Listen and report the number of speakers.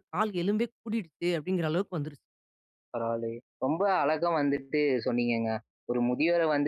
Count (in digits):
2